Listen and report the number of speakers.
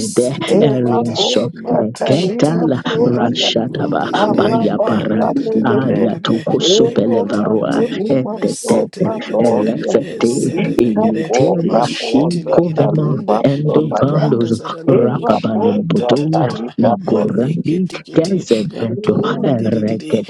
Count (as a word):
three